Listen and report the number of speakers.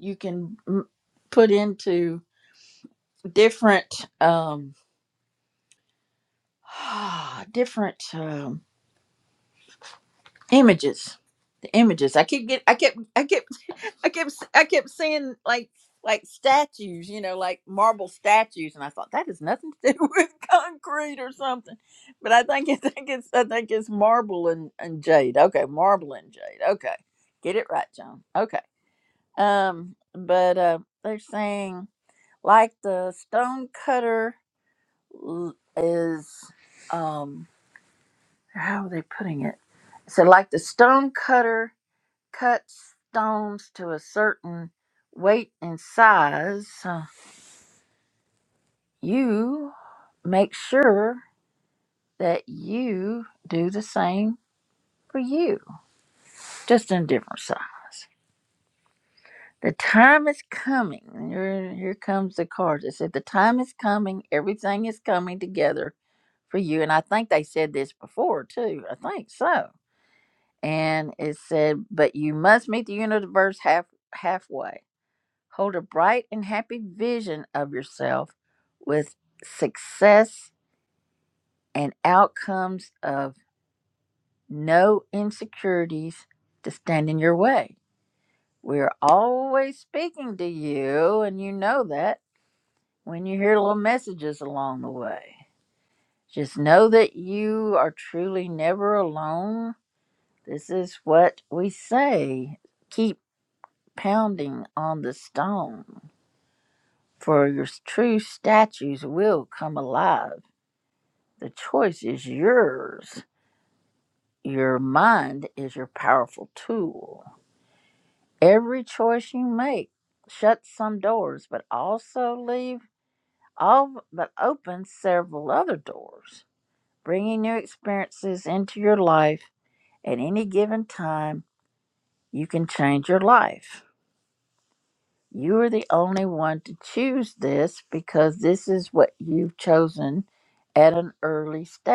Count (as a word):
one